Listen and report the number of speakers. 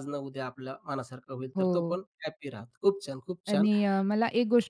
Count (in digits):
2